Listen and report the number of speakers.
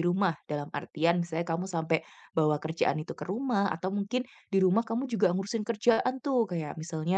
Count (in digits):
1